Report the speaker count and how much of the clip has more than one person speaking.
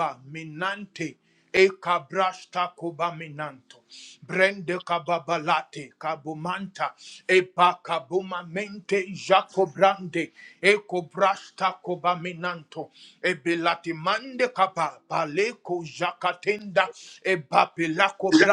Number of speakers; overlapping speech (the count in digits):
1, no overlap